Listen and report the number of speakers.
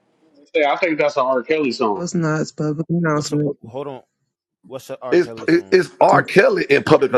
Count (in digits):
4